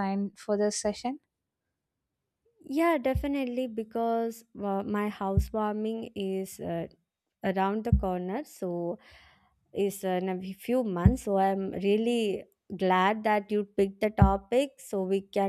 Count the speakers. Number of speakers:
two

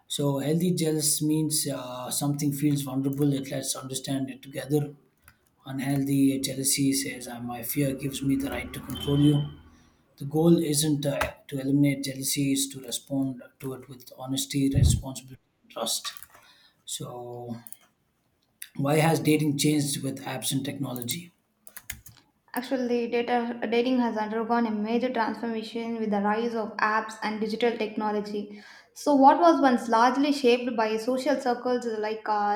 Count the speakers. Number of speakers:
two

